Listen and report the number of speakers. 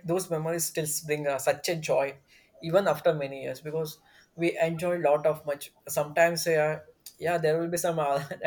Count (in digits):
1